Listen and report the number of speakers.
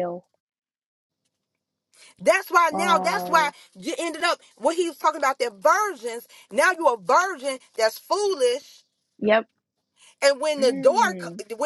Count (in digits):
2